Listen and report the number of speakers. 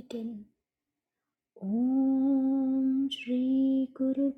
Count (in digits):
1